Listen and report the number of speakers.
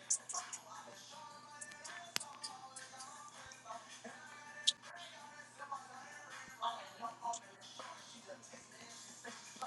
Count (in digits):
0